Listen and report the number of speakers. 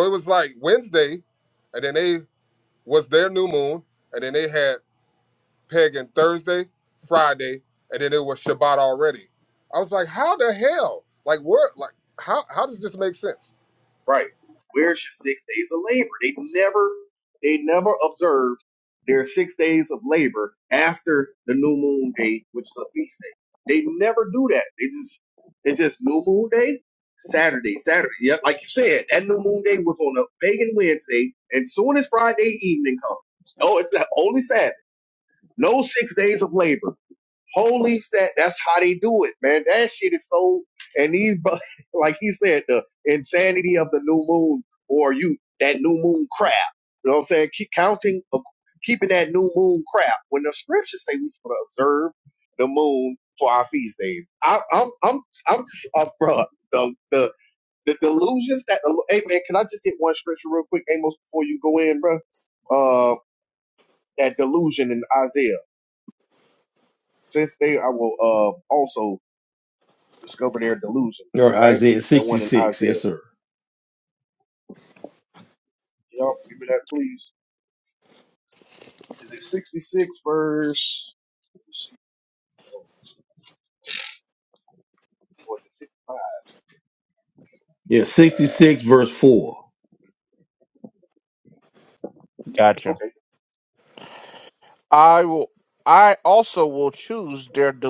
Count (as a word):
four